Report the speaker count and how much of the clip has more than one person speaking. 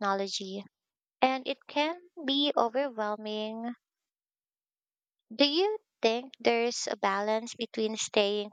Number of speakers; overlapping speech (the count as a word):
one, no overlap